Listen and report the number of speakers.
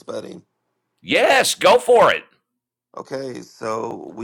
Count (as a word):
two